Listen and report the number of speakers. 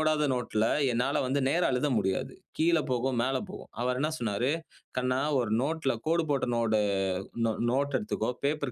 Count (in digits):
1